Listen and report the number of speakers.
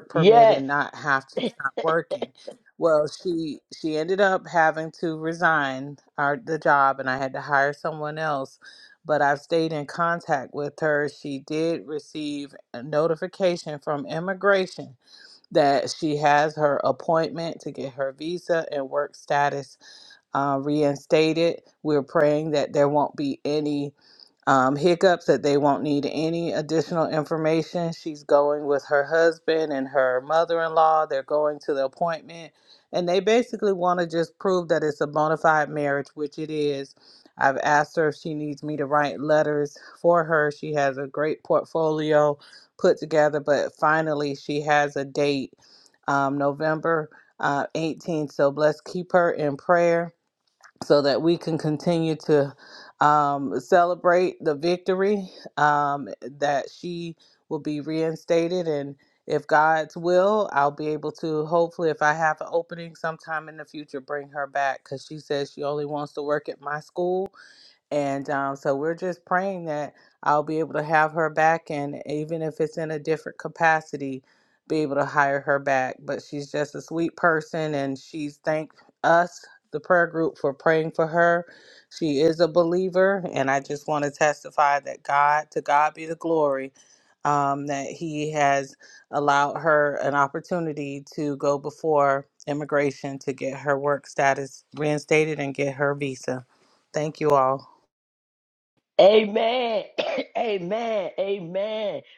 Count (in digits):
2